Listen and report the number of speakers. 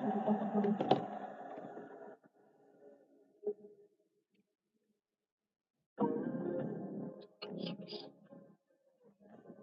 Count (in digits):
0